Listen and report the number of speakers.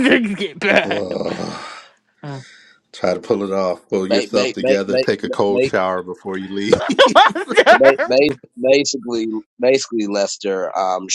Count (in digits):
3